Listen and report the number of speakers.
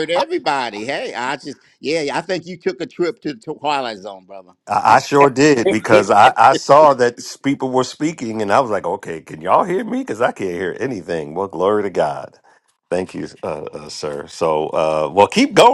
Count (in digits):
2